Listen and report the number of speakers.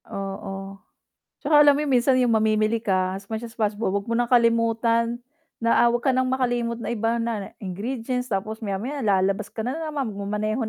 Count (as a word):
one